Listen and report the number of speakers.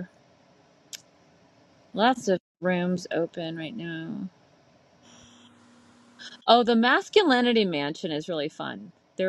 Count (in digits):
1